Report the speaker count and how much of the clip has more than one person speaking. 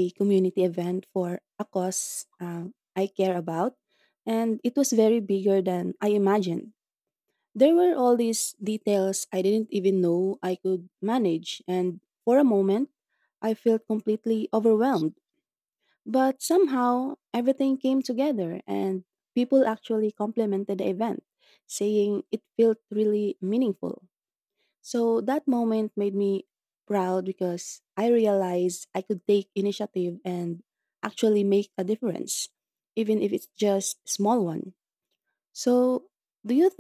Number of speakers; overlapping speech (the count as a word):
one, no overlap